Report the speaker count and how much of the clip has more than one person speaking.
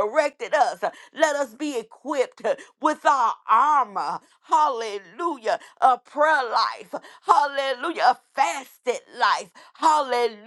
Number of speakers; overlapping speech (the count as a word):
one, no overlap